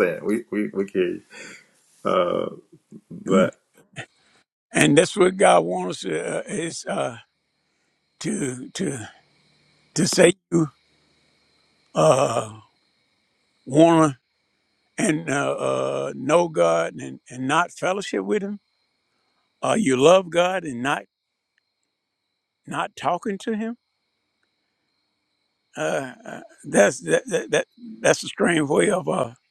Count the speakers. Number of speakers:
2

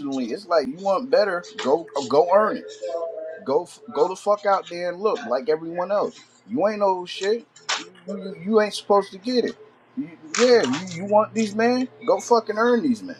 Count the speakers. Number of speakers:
1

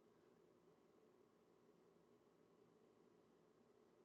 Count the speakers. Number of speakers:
0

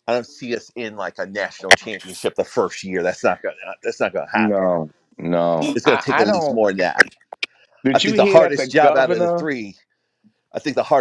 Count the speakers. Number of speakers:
2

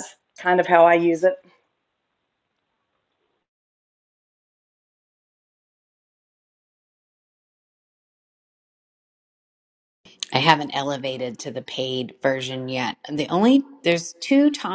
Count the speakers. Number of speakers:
2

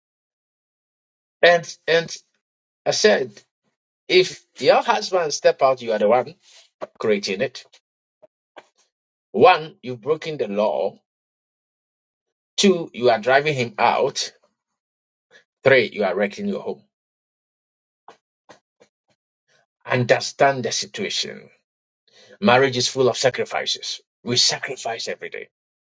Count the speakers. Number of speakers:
1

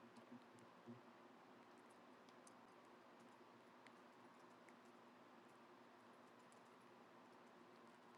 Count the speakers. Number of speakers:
0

